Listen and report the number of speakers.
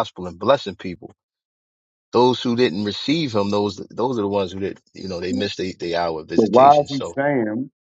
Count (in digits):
2